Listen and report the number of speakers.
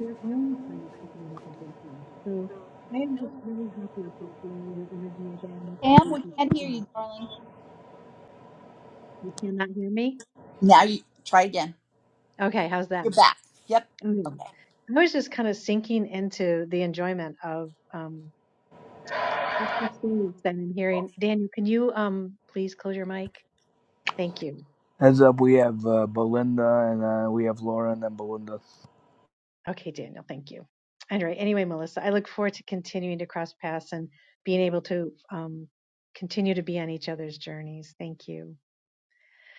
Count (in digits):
3